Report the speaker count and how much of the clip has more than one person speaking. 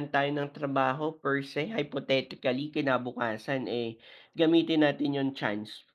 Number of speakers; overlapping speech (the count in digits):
1, no overlap